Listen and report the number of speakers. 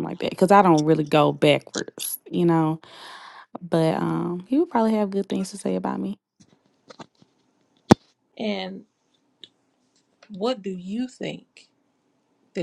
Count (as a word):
two